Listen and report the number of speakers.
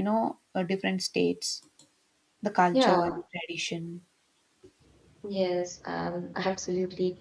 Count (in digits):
2